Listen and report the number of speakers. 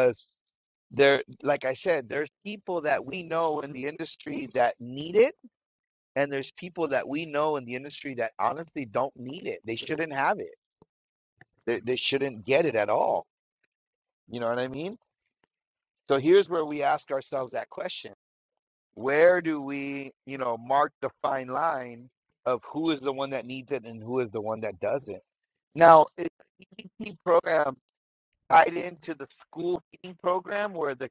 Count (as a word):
one